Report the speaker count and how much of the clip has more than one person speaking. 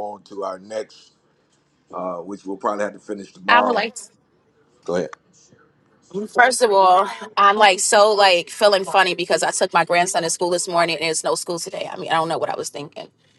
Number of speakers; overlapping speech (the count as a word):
two, about 3%